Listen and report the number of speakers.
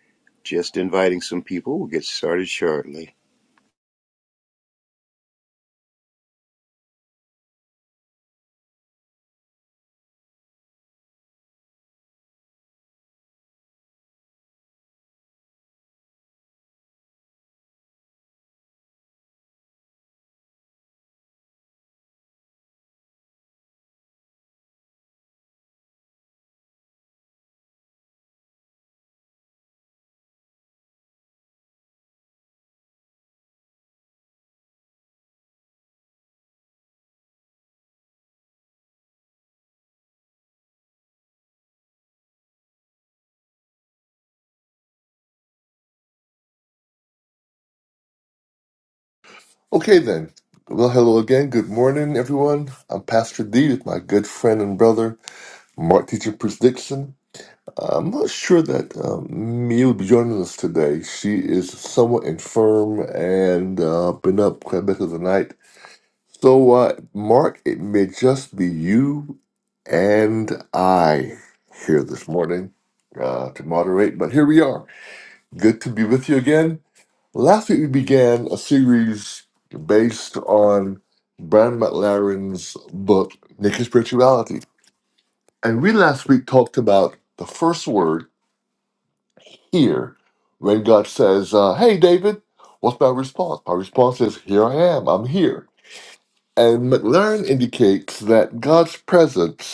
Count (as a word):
two